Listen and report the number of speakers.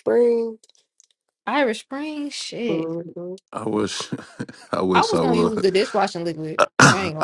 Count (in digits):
3